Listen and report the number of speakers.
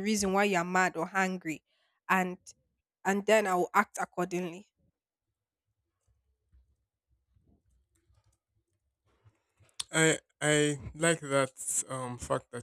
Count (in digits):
2